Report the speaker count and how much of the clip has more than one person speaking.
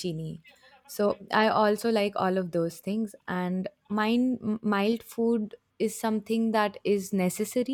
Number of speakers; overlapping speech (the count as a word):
one, no overlap